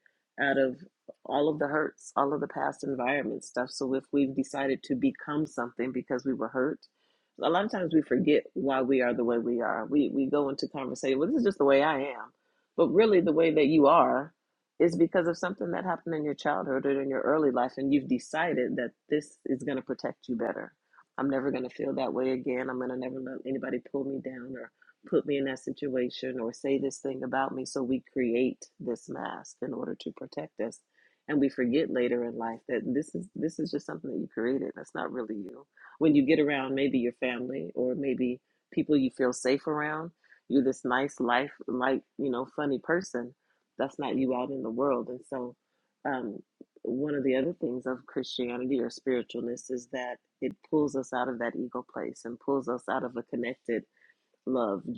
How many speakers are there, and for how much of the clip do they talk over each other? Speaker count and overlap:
one, no overlap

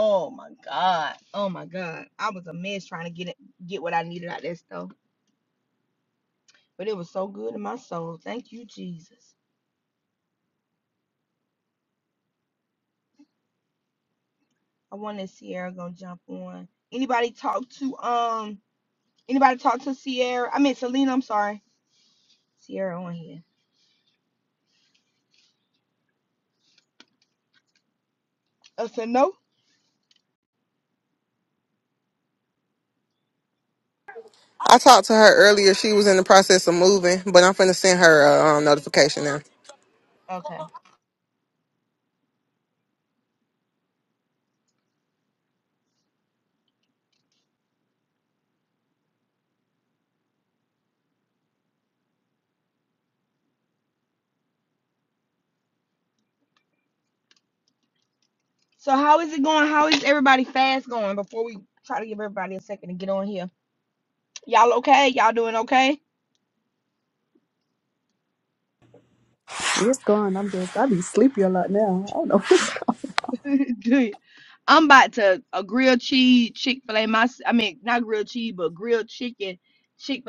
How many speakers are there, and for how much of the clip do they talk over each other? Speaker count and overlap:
three, no overlap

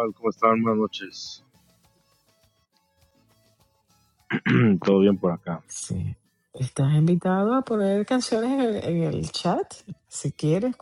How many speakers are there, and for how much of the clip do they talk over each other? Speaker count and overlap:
two, no overlap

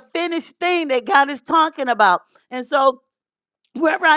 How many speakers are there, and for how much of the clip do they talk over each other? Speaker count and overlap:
one, no overlap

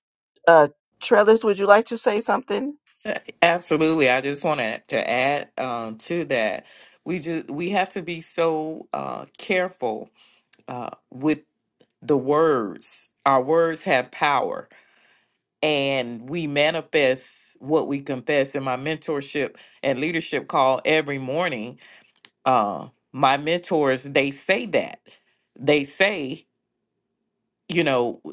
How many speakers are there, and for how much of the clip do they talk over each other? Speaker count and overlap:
two, no overlap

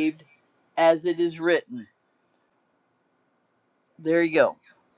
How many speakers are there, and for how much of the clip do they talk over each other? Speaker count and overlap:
one, no overlap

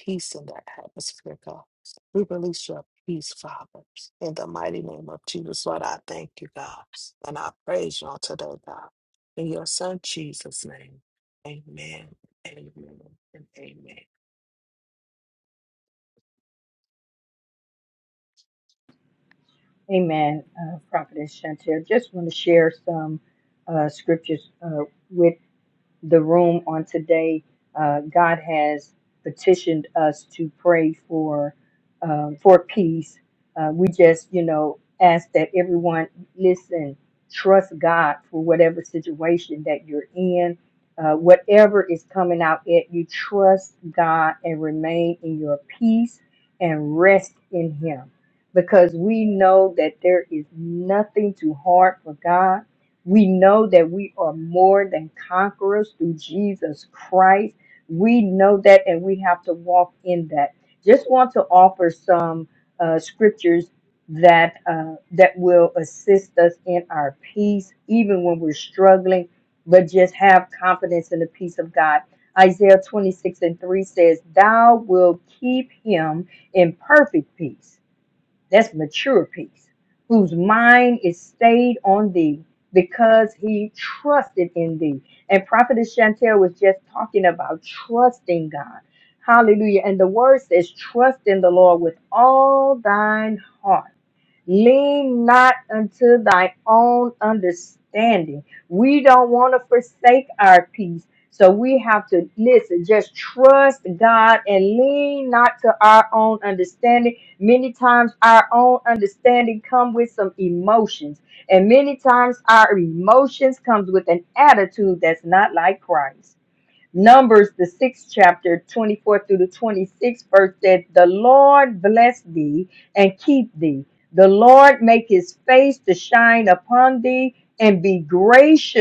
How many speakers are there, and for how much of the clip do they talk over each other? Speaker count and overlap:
two, no overlap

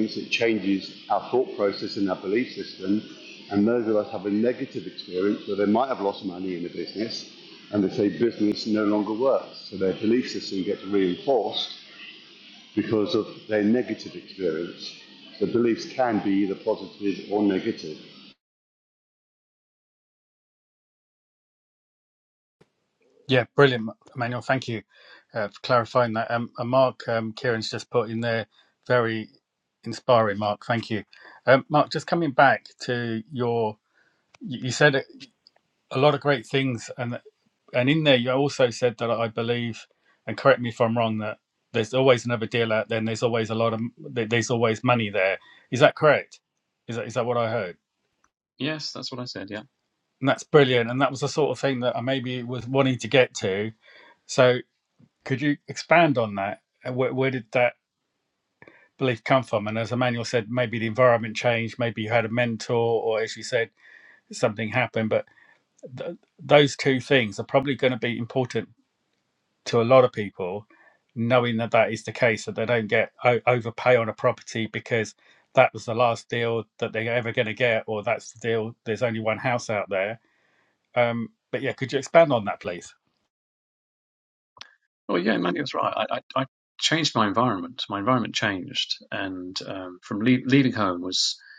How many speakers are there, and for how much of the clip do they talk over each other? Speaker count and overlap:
three, no overlap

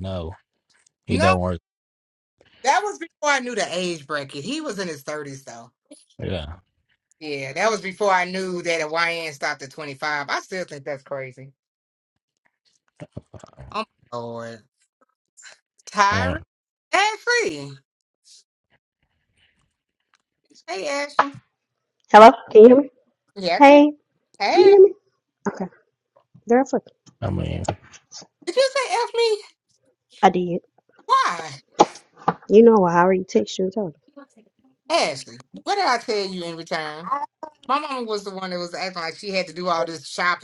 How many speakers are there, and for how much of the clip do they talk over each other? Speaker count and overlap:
three, about 2%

